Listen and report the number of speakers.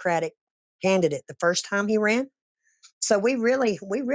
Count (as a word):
one